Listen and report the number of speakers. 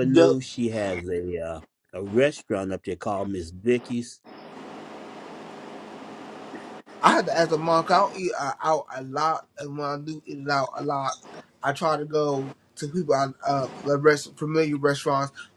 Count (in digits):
2